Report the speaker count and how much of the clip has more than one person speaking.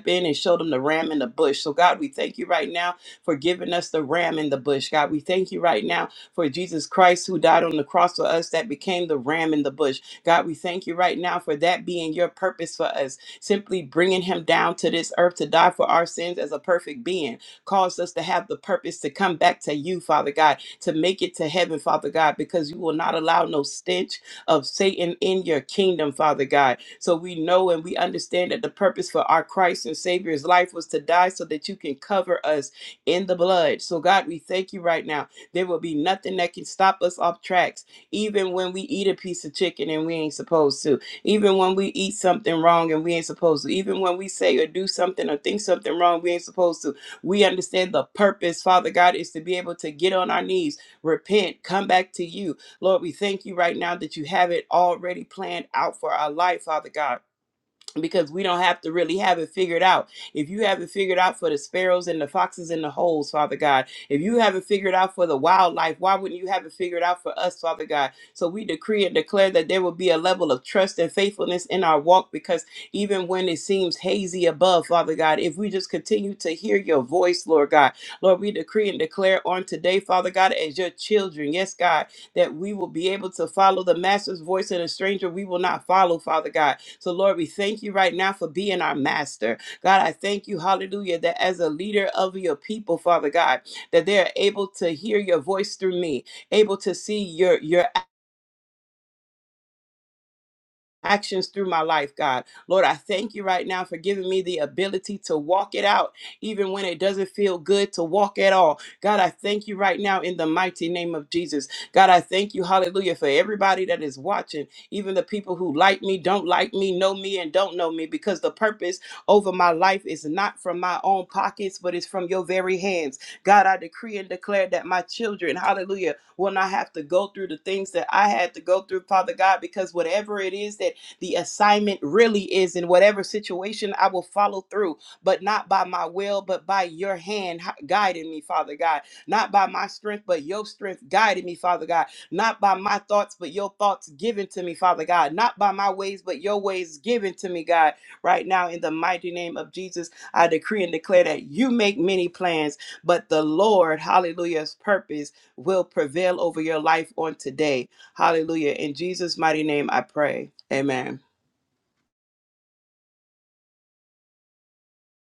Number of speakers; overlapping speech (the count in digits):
1, no overlap